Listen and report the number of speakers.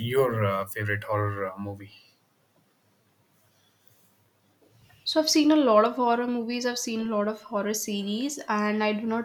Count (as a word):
two